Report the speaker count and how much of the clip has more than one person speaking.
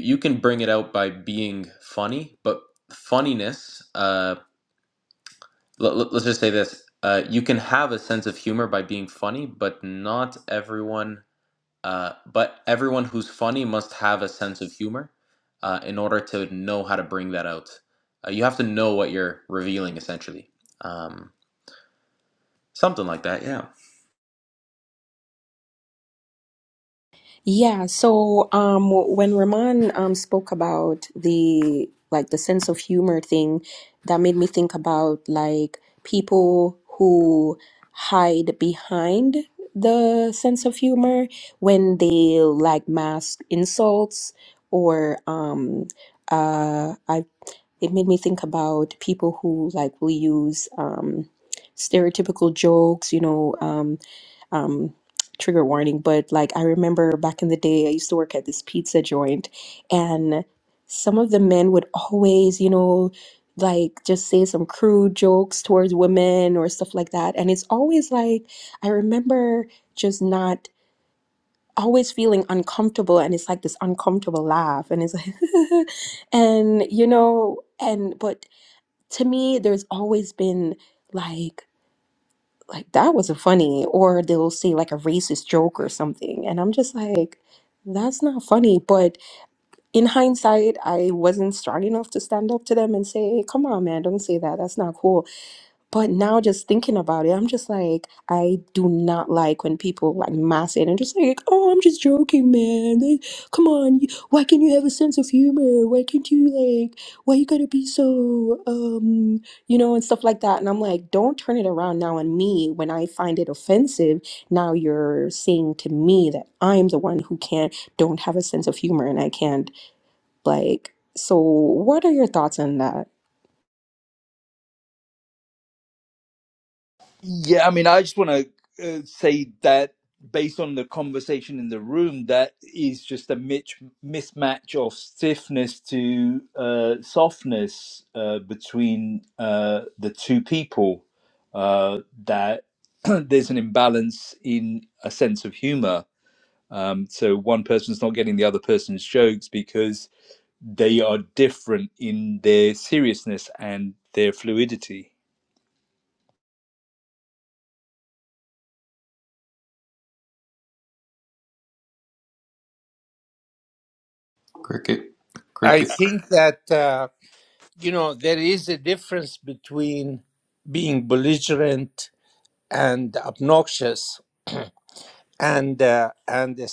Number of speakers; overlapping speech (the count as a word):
four, under 1%